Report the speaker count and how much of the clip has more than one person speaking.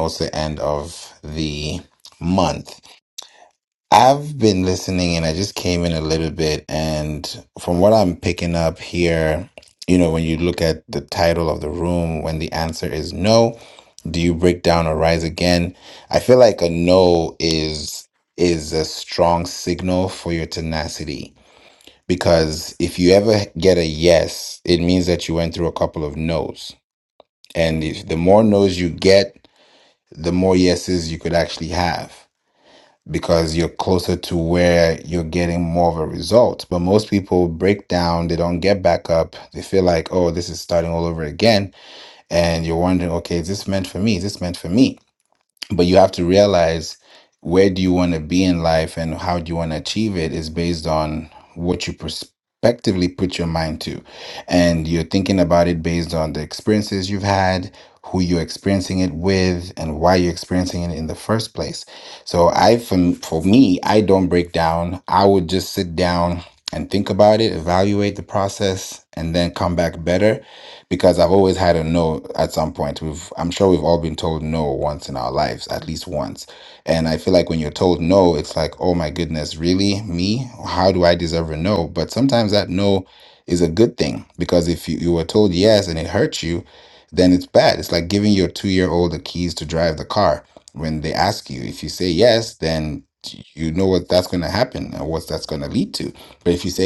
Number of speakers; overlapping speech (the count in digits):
1, no overlap